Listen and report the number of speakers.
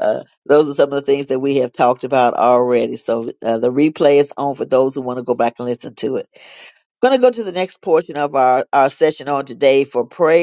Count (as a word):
one